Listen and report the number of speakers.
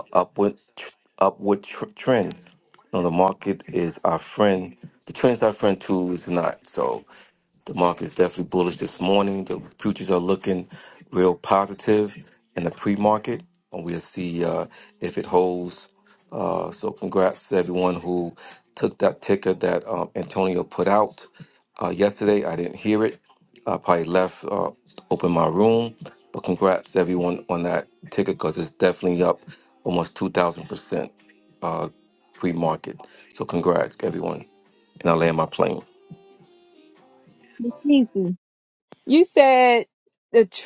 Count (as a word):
two